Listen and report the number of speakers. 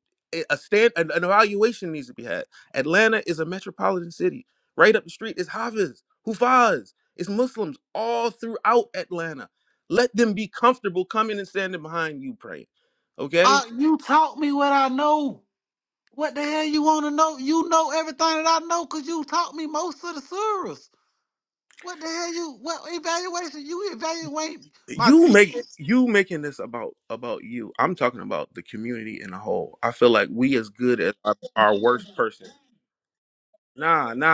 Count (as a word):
two